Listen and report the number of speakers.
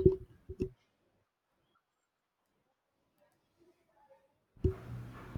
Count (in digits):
0